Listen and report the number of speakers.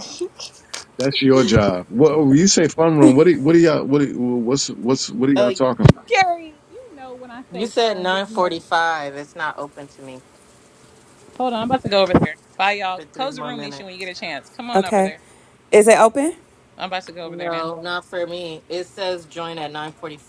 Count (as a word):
four